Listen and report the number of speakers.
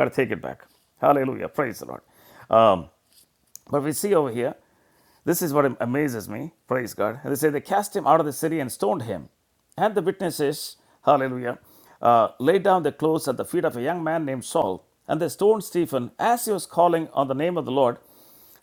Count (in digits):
1